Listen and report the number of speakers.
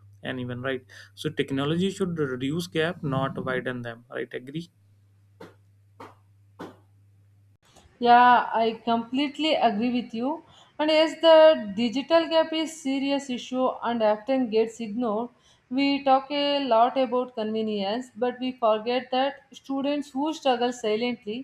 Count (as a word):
two